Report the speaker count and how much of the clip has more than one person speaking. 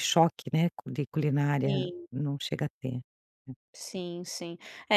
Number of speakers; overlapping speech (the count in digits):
2, about 9%